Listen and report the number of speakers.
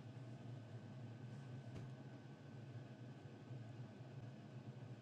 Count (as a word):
zero